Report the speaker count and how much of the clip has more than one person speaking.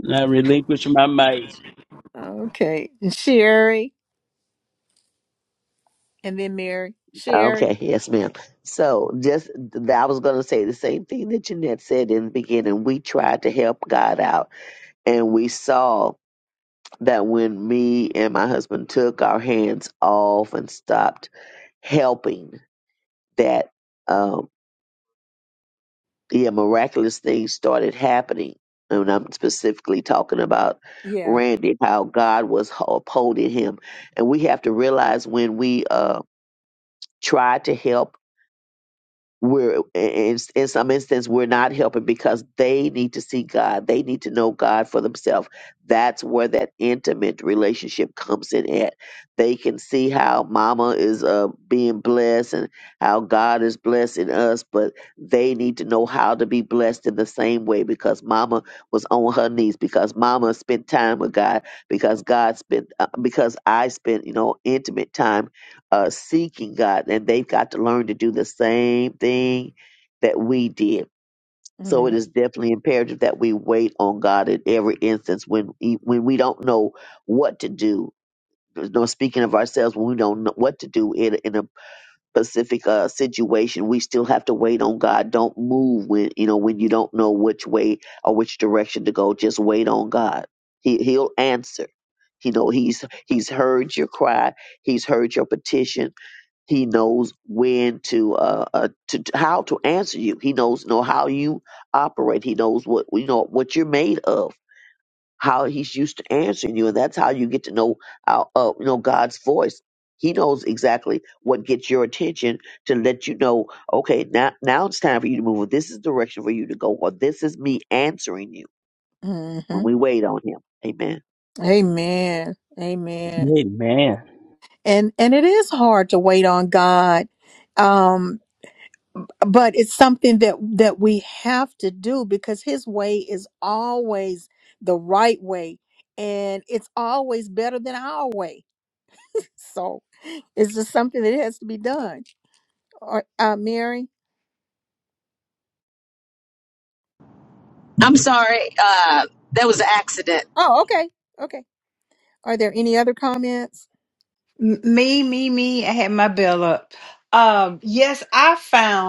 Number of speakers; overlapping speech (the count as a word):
five, about 1%